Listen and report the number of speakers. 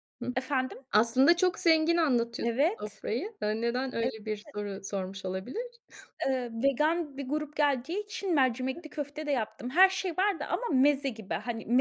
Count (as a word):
two